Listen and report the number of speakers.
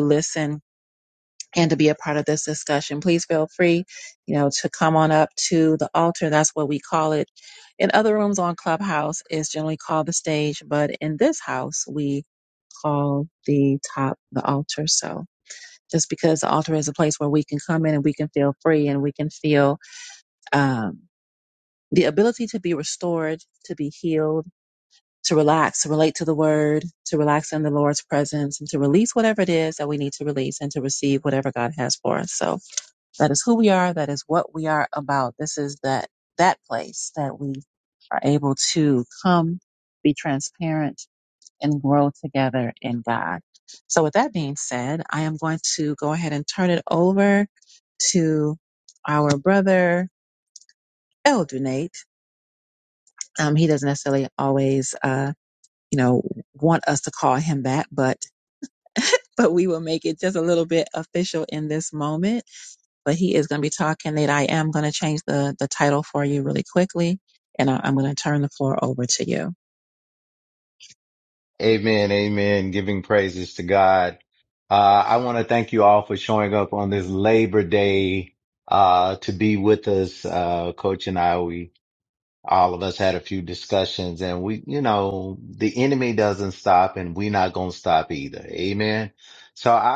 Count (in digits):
2